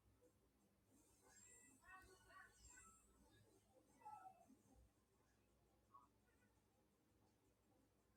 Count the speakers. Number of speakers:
0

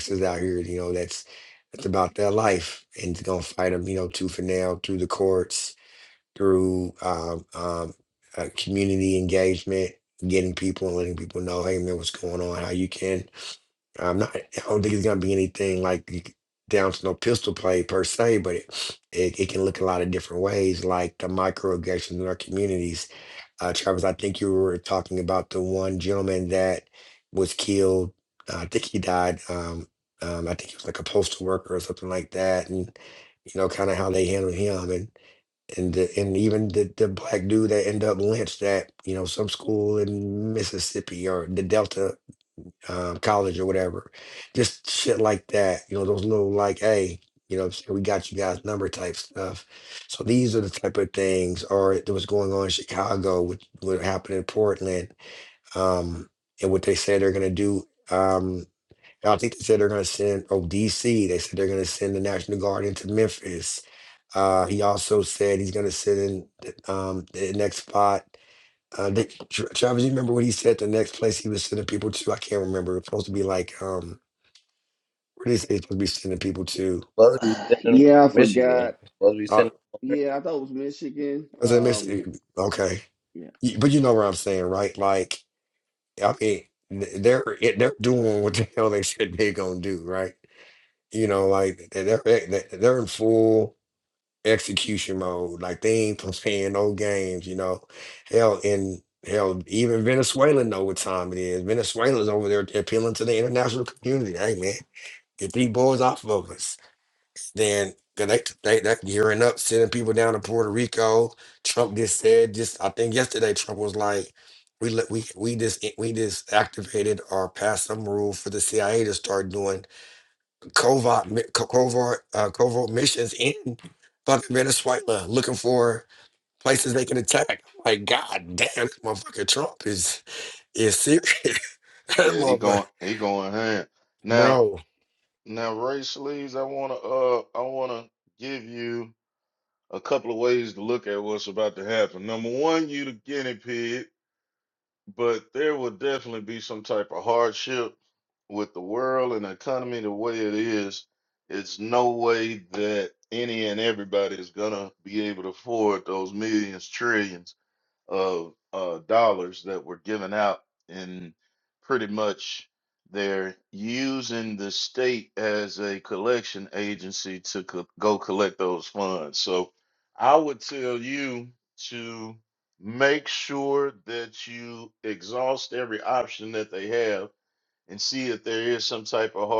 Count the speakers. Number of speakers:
4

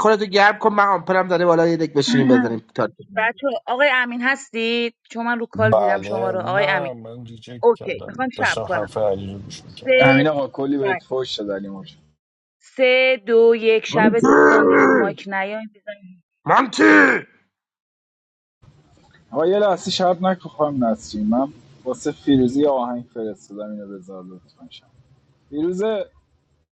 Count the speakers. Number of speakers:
4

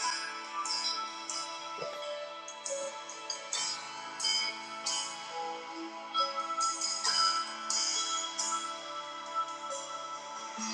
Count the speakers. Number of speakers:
0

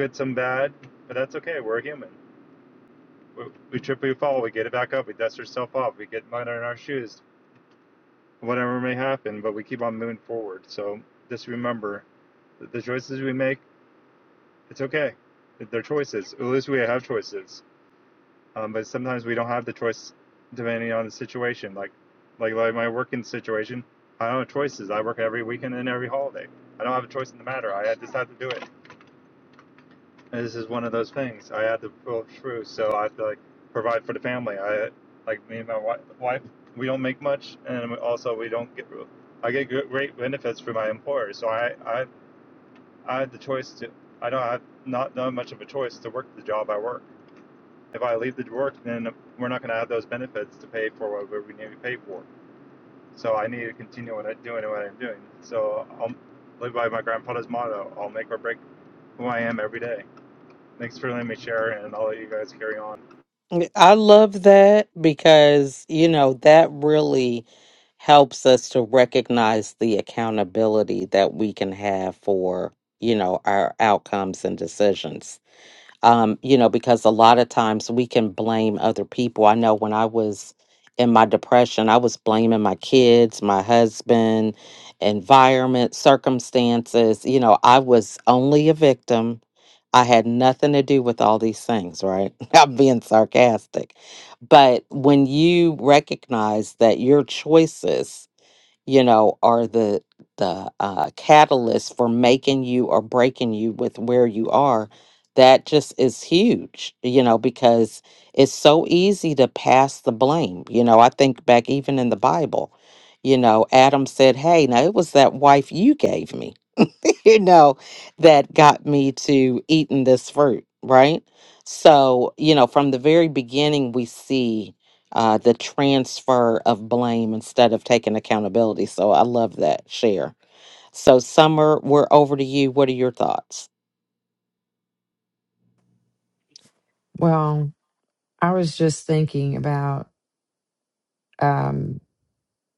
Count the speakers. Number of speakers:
3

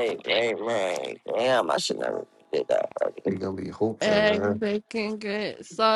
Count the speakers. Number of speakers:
3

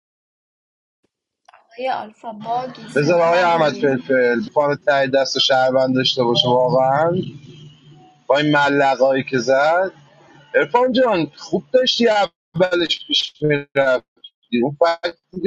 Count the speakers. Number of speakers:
2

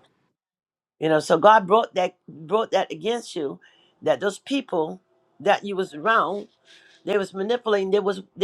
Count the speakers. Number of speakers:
1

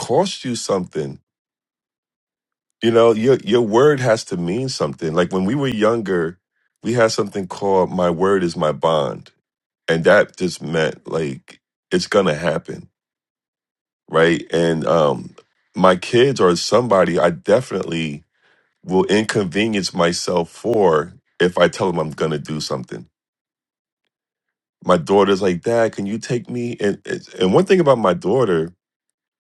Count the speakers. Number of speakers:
1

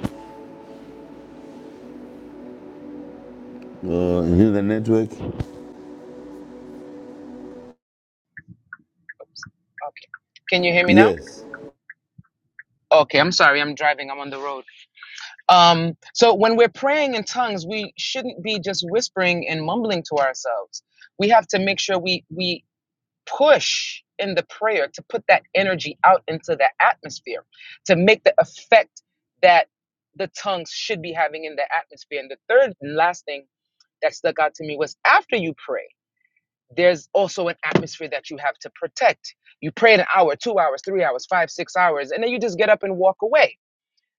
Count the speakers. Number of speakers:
2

